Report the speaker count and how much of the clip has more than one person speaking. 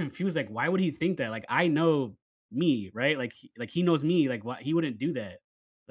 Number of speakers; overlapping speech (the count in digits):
1, no overlap